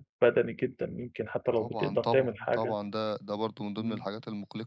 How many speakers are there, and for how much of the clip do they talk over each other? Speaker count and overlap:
two, about 30%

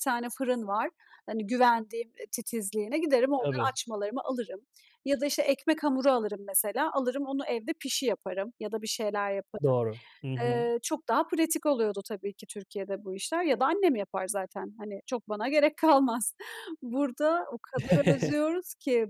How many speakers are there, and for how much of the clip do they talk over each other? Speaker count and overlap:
two, about 3%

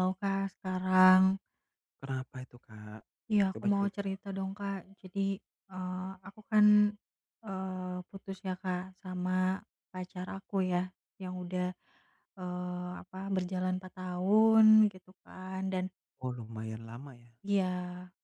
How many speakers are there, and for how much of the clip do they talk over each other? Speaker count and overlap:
two, about 3%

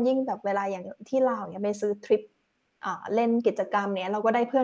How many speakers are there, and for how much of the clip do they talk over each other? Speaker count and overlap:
one, no overlap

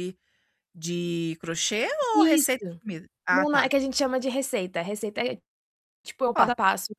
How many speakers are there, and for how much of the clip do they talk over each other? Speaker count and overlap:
two, about 16%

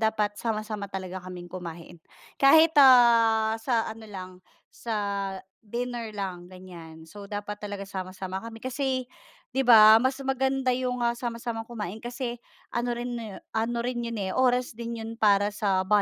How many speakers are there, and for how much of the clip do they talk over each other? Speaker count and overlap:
one, no overlap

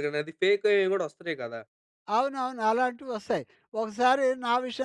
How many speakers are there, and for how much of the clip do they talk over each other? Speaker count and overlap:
two, no overlap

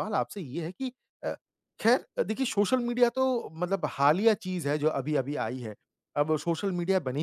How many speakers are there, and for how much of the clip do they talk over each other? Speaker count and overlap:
one, no overlap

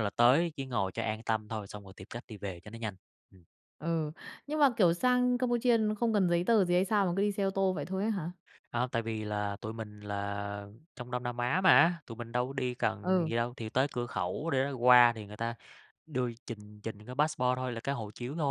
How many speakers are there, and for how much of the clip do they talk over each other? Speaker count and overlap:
two, about 2%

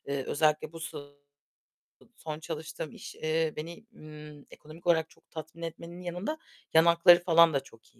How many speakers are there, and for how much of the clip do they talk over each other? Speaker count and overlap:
one, no overlap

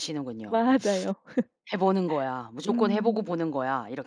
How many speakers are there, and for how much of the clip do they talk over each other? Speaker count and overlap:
two, about 17%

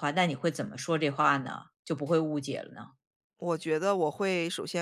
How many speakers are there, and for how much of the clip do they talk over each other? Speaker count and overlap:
two, no overlap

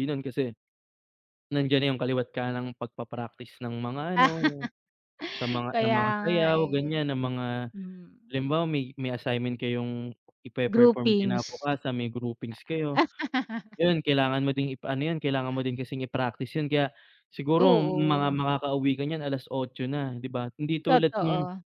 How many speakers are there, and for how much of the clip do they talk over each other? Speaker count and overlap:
two, about 16%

